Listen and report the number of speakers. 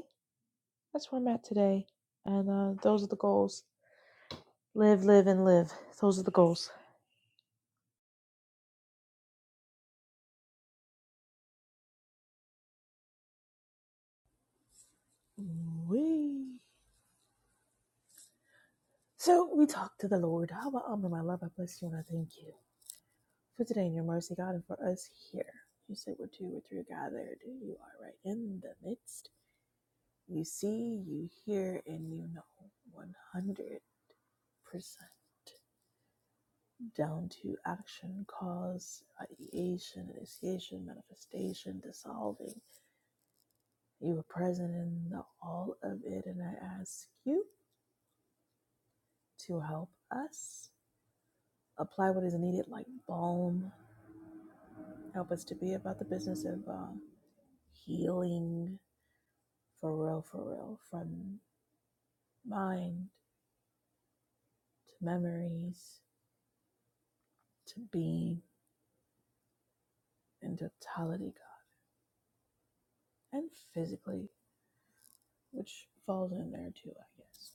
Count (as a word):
two